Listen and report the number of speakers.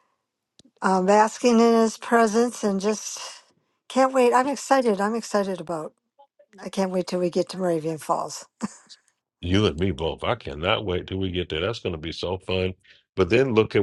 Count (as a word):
two